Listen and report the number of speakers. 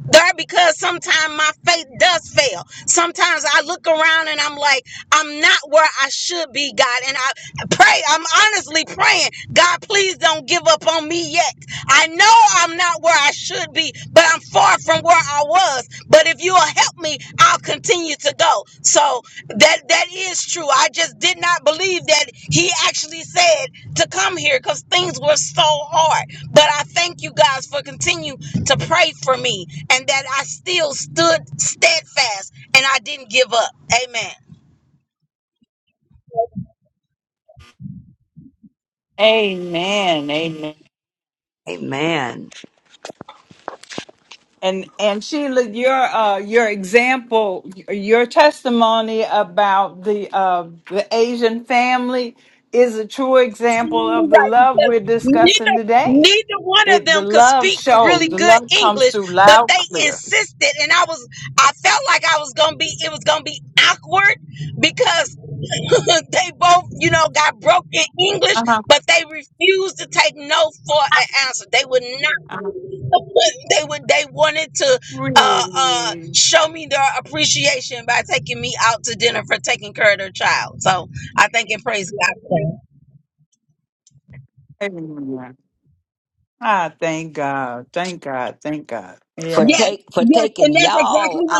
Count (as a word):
three